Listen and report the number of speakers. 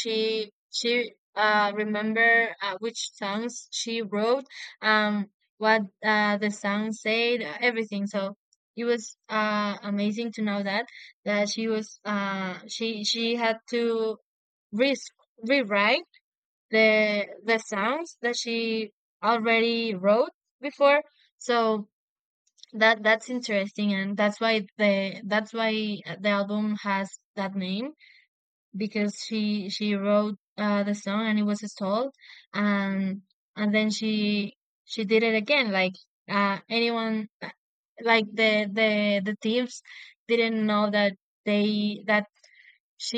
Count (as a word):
one